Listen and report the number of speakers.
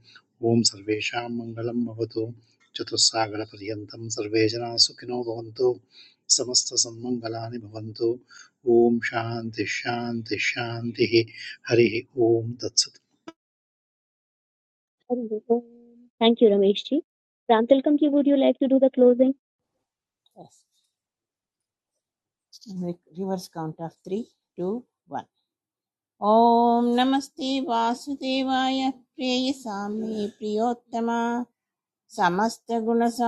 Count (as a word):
three